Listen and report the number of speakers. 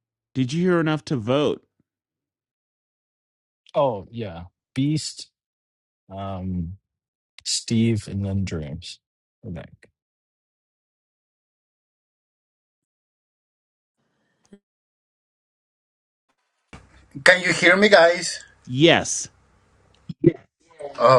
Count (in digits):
3